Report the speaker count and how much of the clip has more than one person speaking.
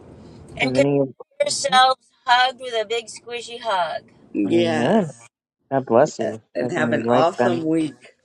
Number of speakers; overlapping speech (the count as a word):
three, about 32%